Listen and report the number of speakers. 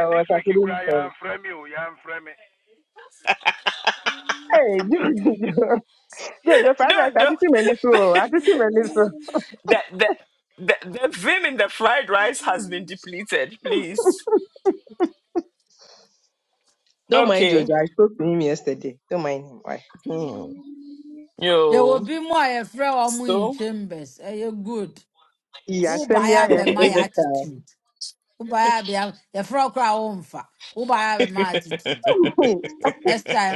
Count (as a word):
four